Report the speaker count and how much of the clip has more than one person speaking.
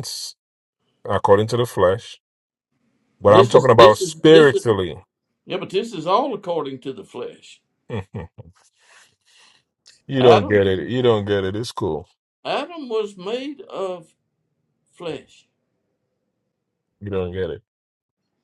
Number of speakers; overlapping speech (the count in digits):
2, about 10%